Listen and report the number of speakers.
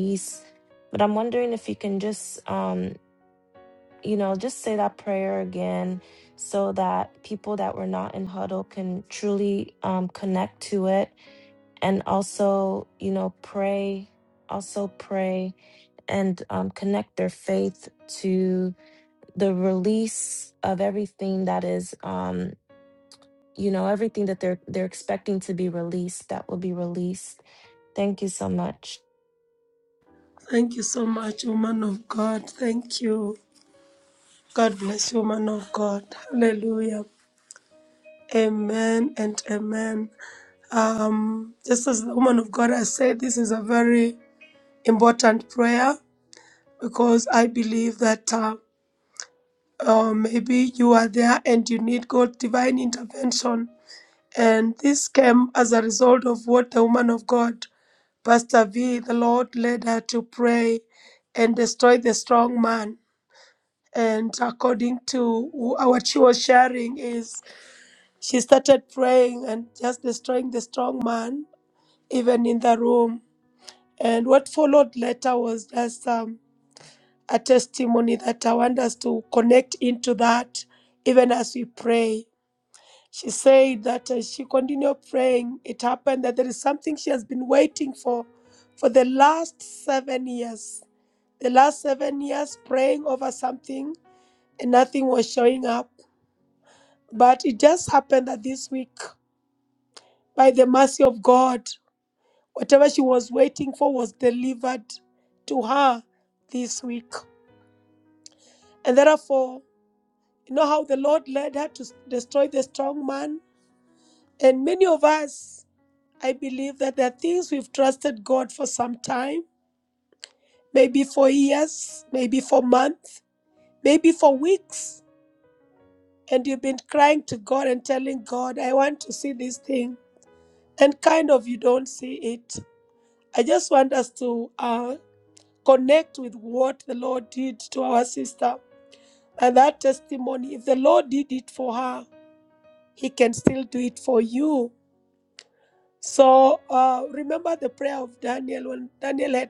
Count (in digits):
2